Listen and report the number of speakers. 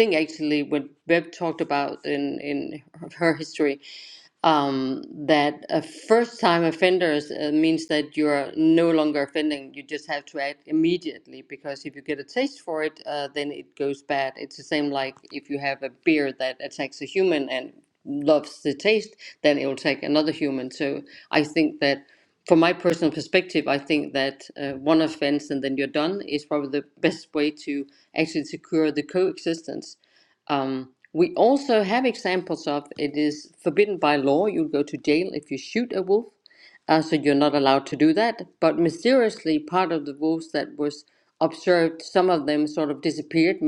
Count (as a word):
one